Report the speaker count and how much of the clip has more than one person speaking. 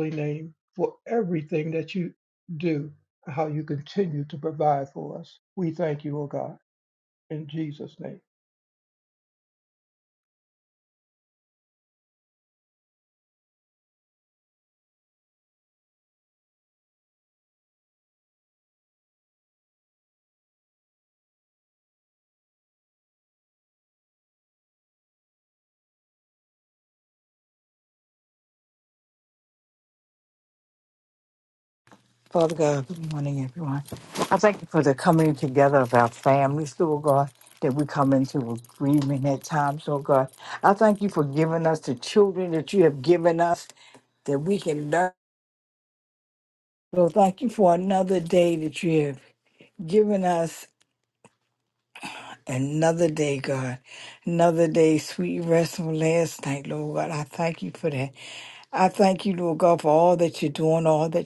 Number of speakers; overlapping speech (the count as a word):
two, no overlap